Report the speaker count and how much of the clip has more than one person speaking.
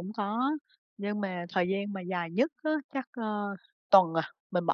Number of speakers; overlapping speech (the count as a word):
one, no overlap